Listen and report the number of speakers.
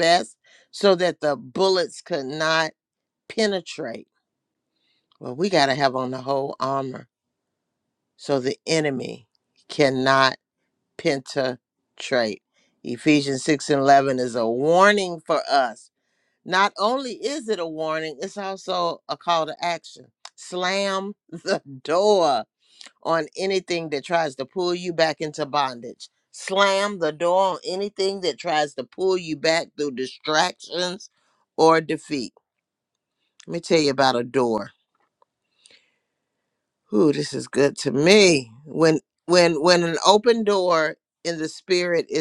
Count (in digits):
1